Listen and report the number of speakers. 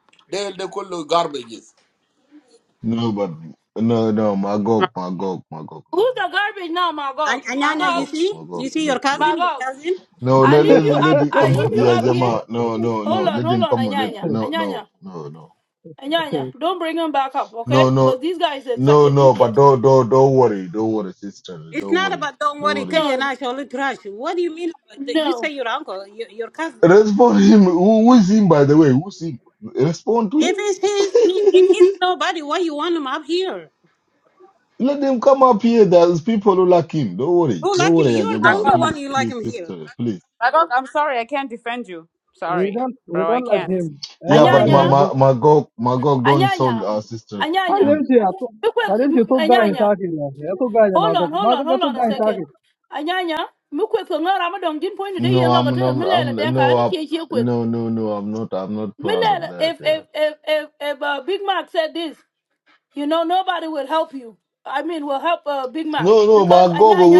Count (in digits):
6